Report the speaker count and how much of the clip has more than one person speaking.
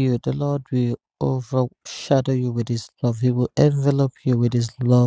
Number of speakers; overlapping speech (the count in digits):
1, no overlap